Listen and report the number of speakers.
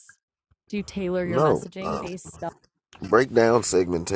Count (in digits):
2